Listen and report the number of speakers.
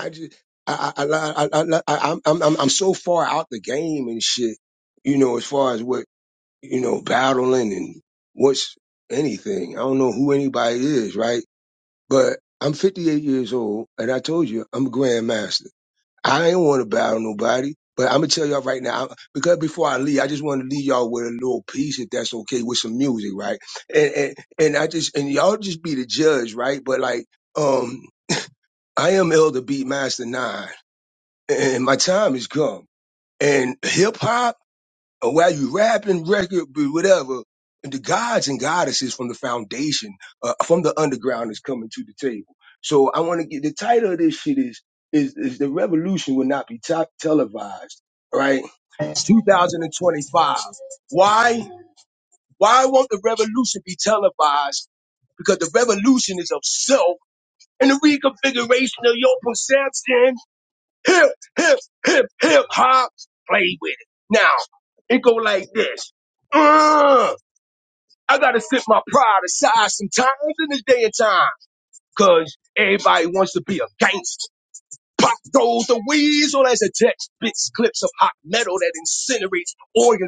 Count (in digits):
1